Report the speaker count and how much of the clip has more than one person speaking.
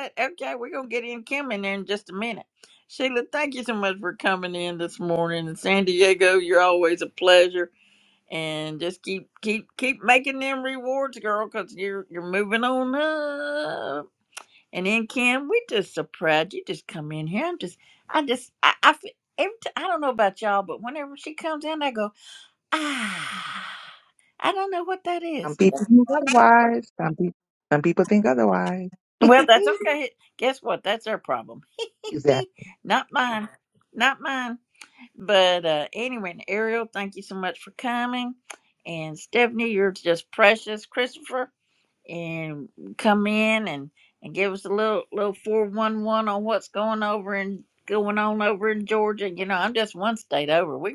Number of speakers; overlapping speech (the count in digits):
2, under 1%